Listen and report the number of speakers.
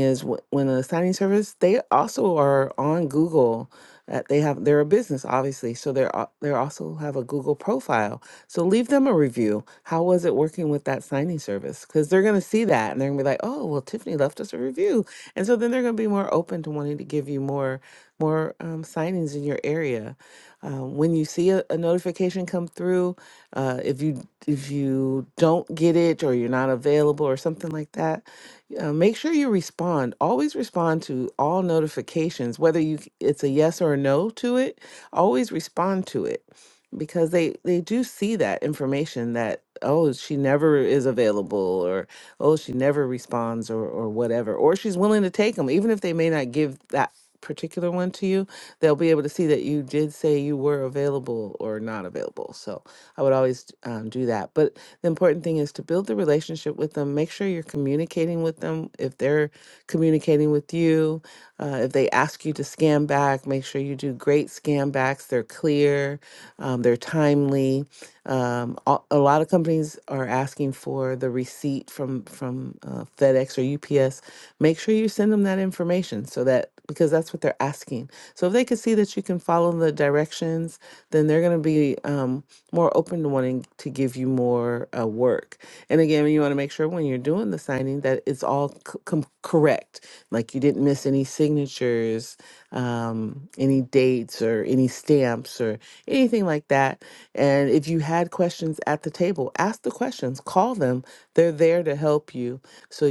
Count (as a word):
one